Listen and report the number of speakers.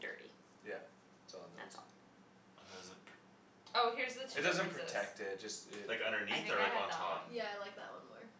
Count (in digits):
4